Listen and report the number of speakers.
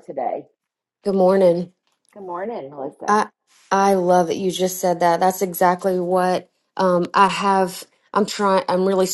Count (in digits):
2